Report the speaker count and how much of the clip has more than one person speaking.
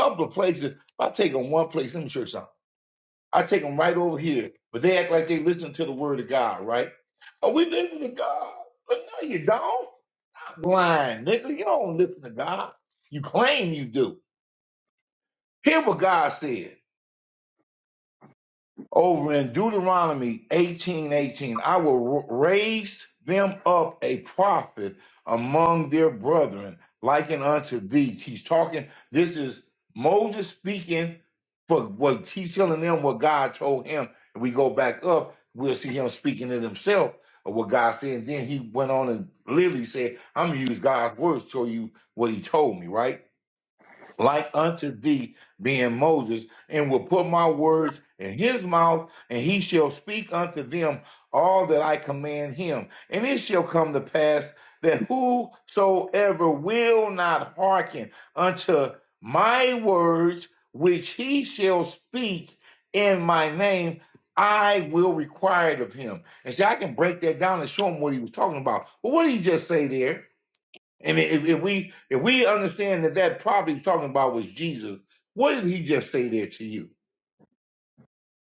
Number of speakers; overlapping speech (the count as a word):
one, no overlap